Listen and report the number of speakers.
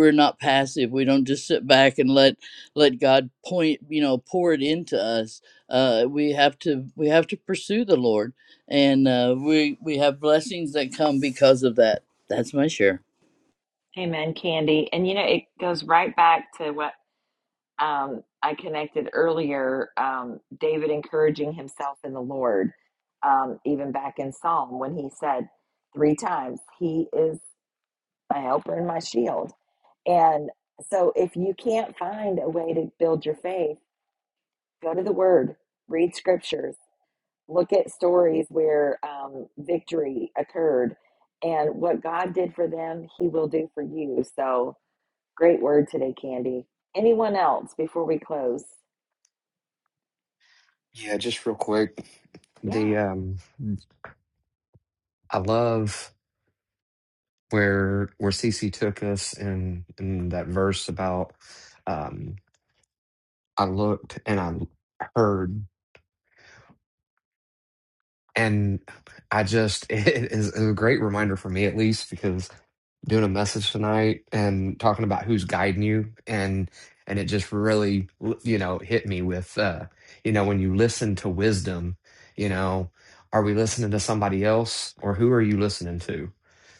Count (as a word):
three